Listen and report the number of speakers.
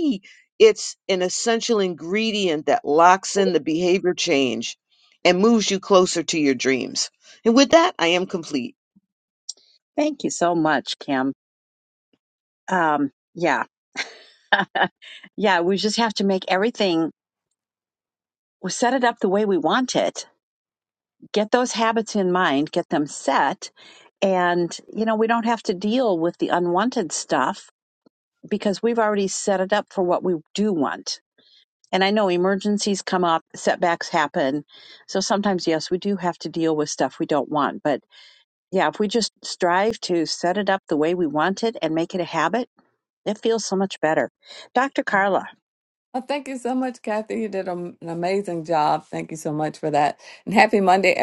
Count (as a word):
three